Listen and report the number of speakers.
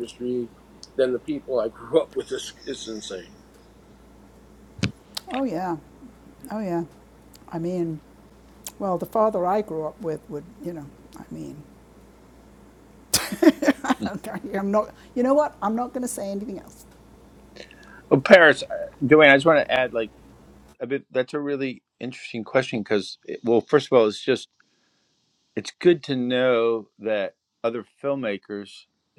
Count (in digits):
3